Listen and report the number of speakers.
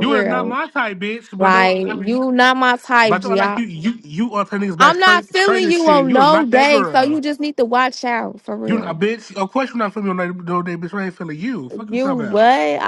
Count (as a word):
two